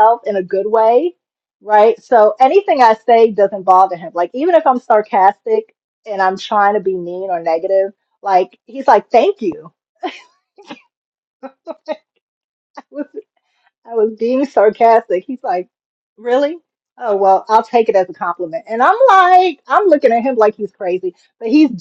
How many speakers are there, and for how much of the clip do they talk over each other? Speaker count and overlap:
one, no overlap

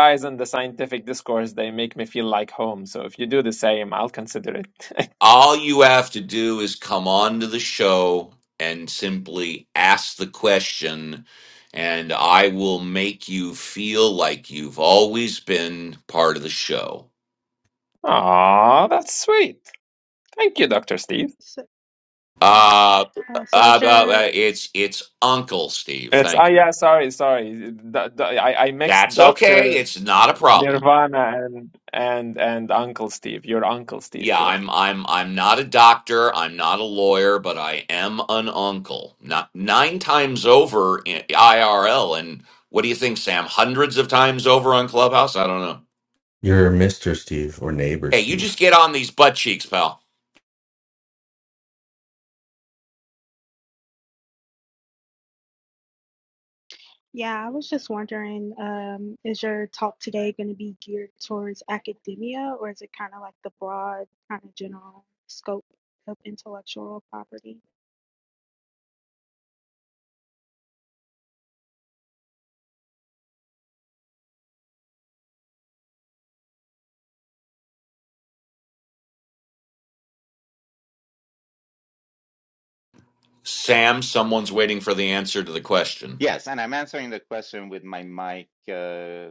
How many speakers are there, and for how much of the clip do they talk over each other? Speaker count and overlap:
five, about 4%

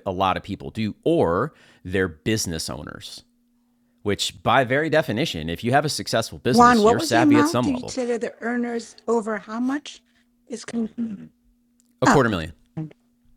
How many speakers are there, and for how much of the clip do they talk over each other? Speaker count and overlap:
two, about 13%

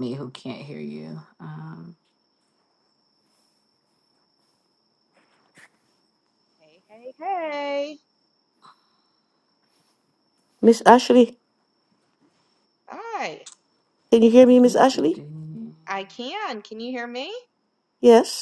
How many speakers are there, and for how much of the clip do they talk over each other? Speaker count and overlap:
three, about 3%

